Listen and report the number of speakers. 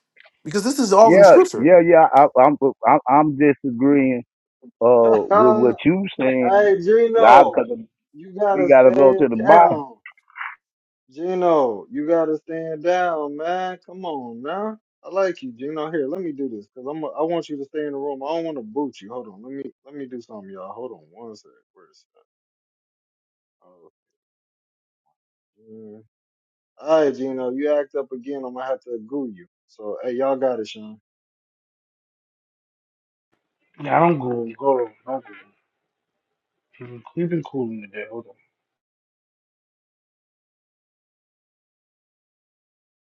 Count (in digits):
4